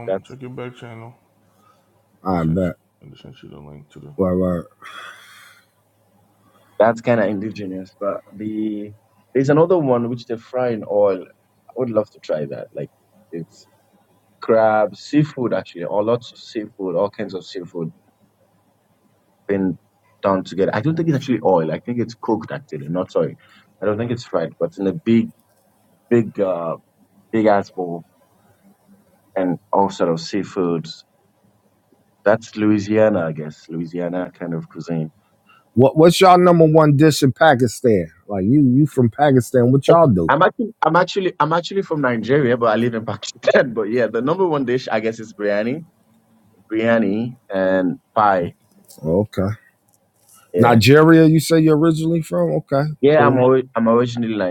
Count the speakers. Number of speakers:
three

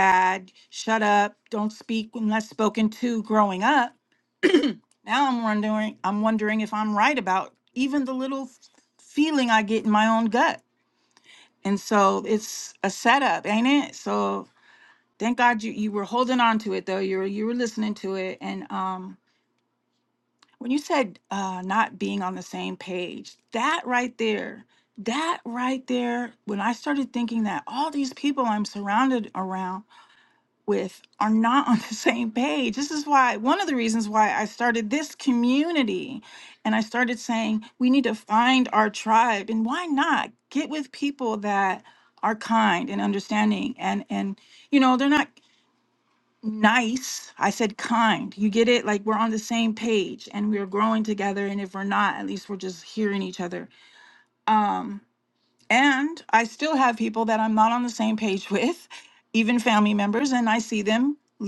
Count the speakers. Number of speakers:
one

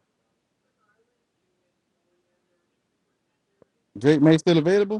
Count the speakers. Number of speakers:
one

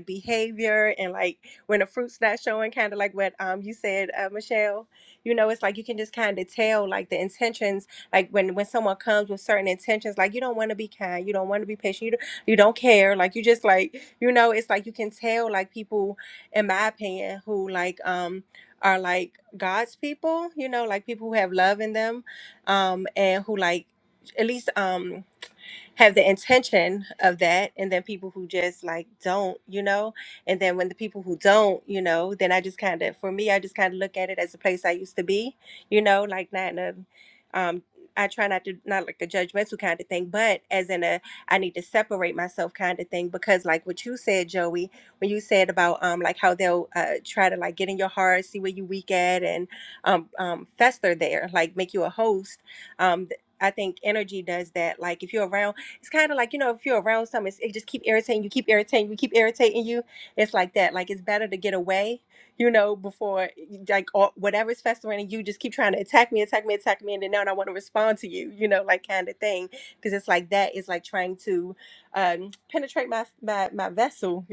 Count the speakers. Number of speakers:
one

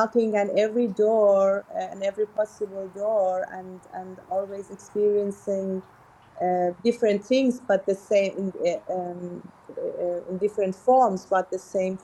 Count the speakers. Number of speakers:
one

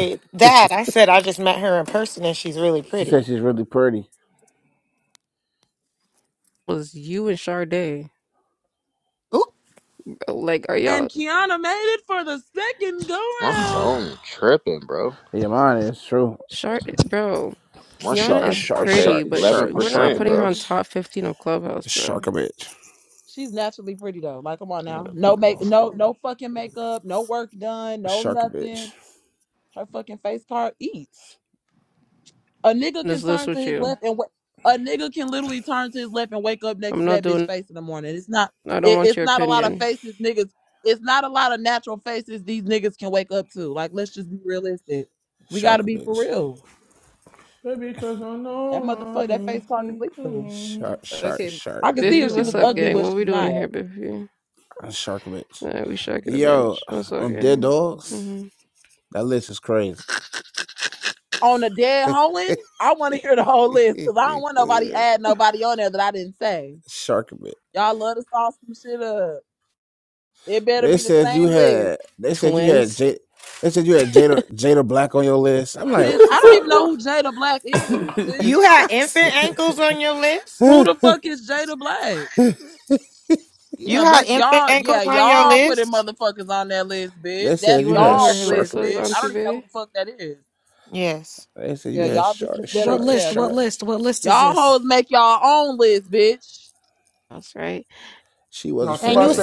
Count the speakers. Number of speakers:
seven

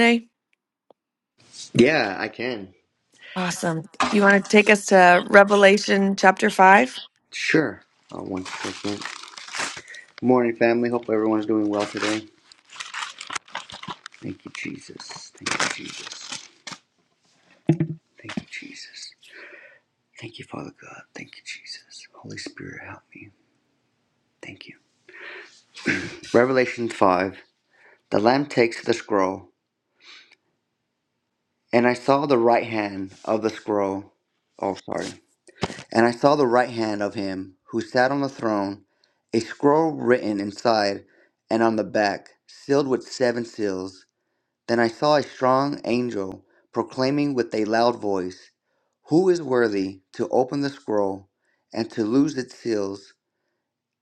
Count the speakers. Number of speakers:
two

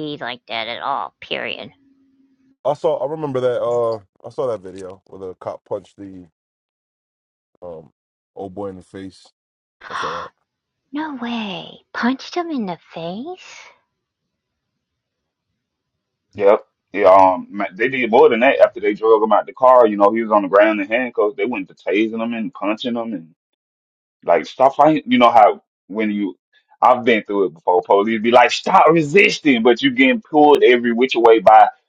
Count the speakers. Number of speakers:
three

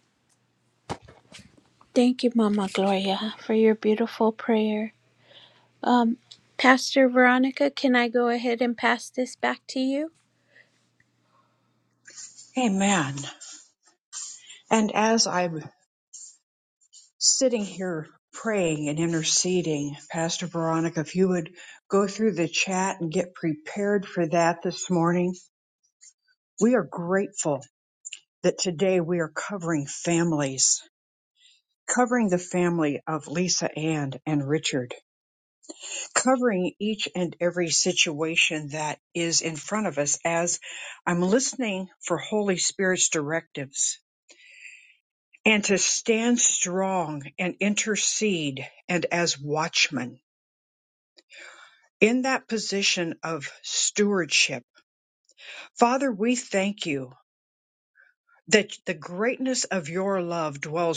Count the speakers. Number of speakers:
two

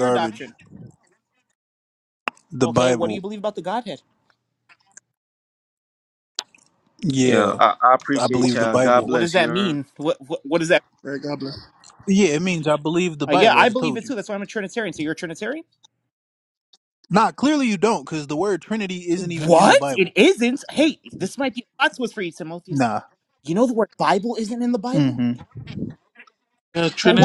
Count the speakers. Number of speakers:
four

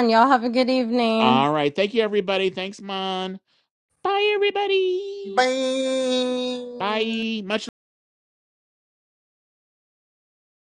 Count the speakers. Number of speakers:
three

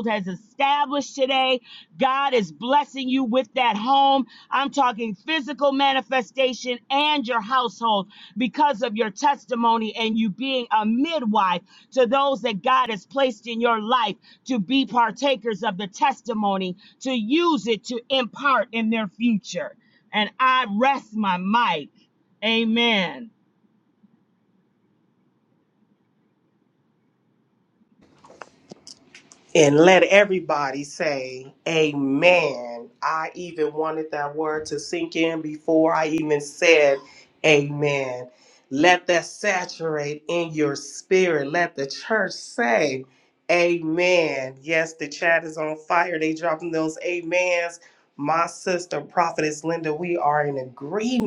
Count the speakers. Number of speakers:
two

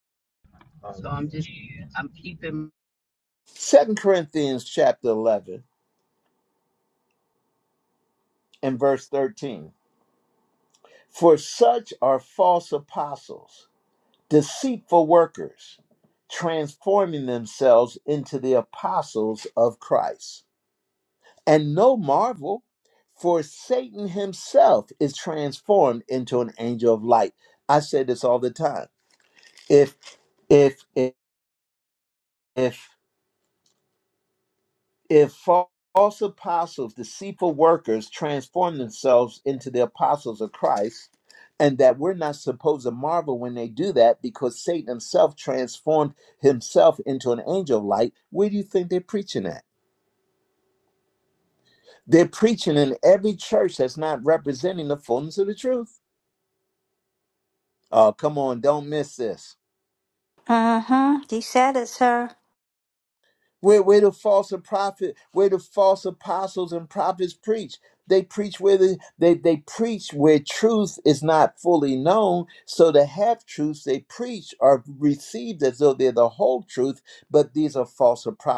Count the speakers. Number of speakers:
three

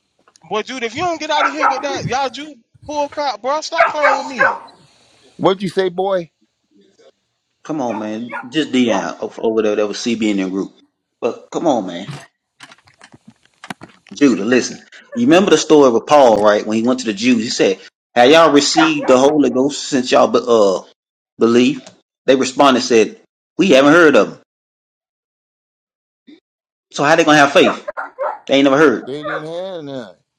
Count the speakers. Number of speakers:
three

